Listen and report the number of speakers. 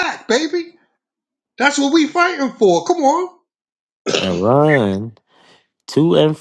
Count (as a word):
two